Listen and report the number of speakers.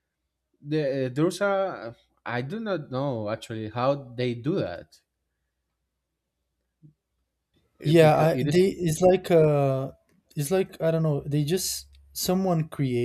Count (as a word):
two